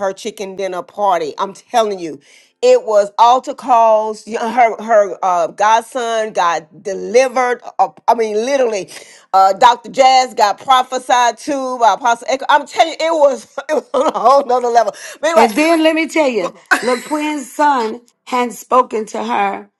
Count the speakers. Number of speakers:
two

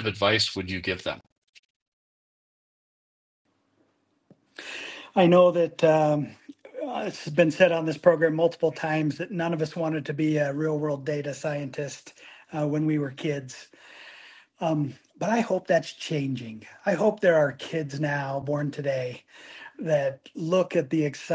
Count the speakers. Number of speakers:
two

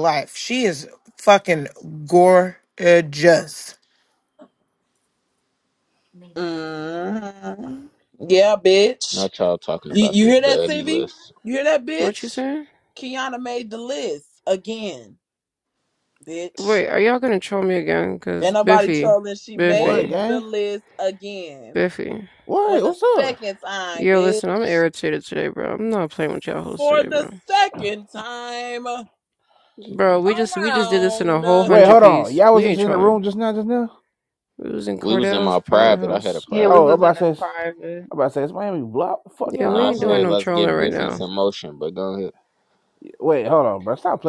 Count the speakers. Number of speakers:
six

